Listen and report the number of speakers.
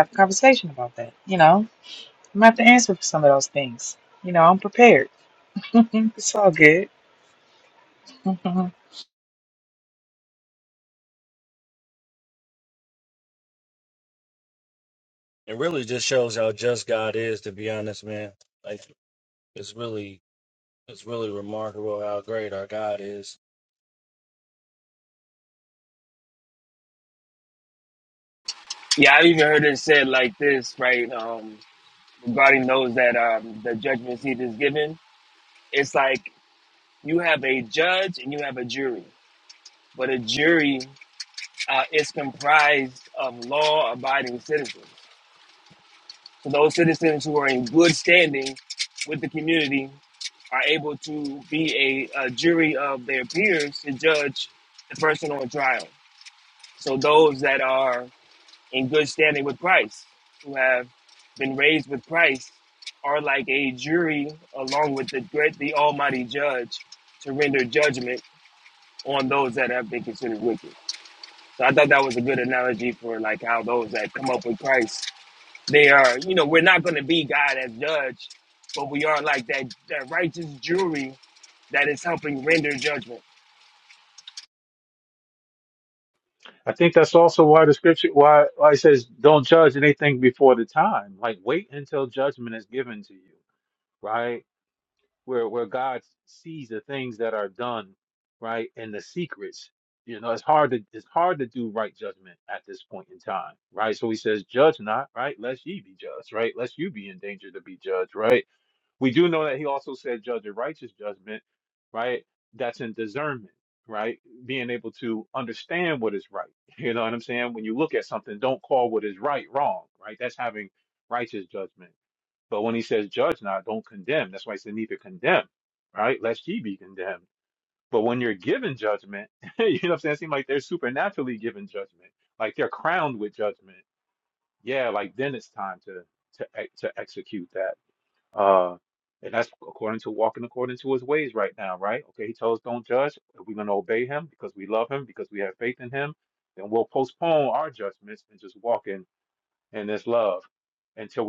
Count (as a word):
four